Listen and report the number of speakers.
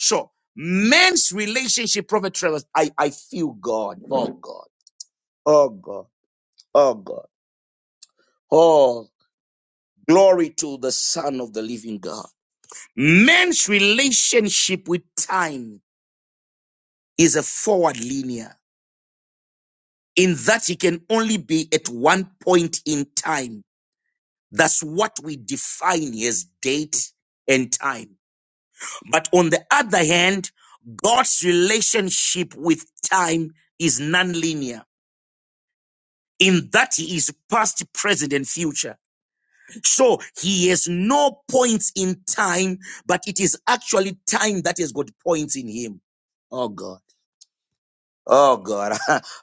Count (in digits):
1